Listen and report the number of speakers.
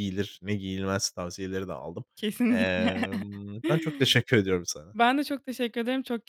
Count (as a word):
two